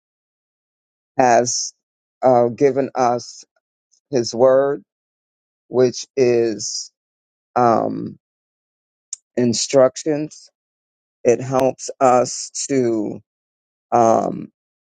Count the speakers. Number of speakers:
1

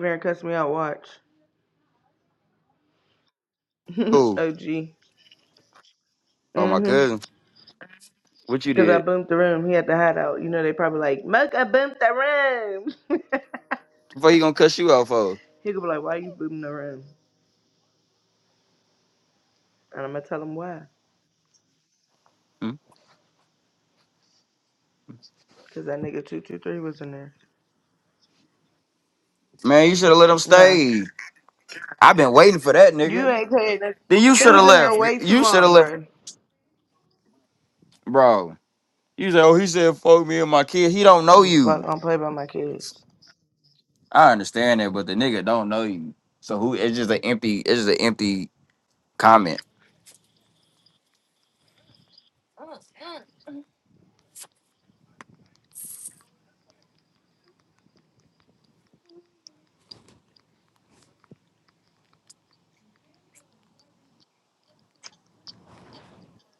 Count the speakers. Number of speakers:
2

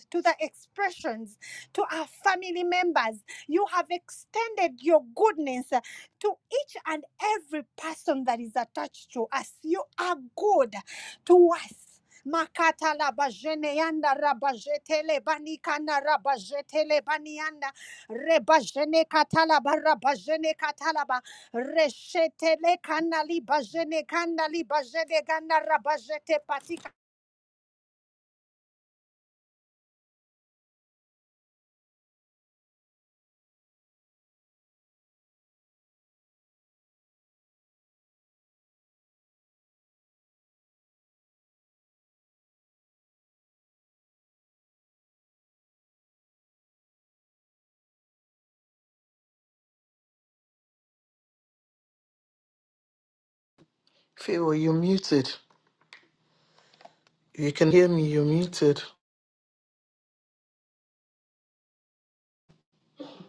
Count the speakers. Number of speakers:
2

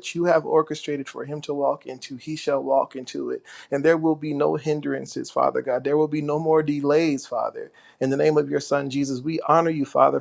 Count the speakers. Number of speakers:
1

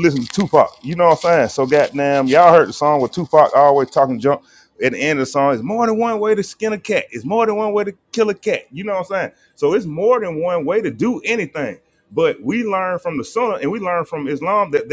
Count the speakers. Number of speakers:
1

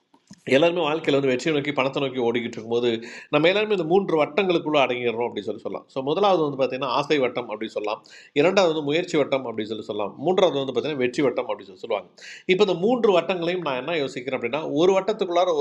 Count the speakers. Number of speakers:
1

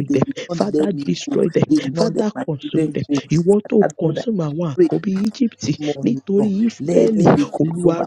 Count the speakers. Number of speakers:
2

